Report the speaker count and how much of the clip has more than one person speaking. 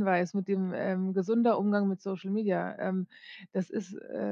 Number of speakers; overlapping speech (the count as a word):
one, no overlap